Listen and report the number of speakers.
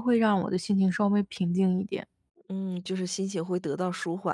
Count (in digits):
2